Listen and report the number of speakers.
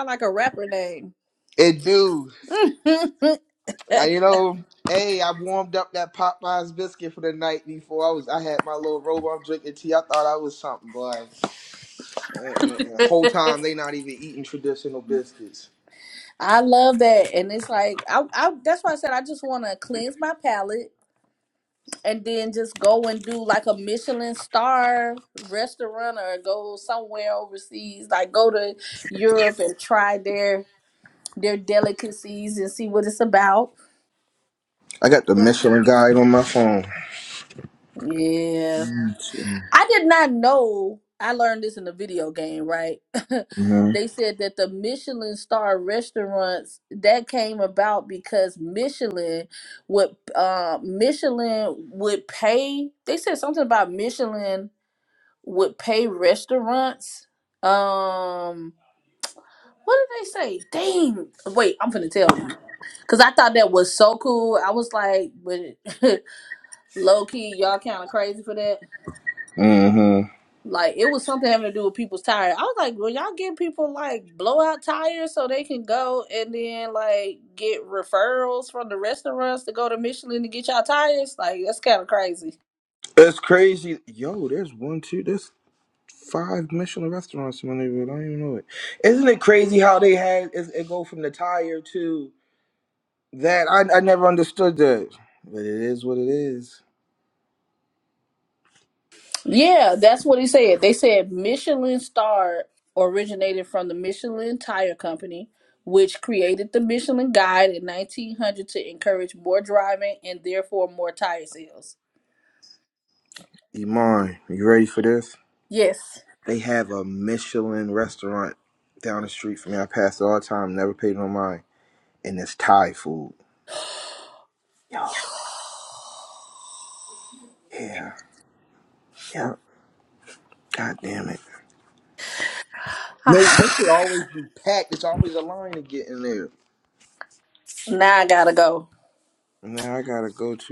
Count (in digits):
2